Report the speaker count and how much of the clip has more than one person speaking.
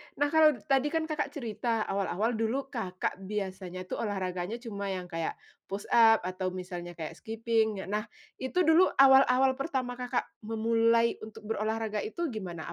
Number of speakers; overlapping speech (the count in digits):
1, no overlap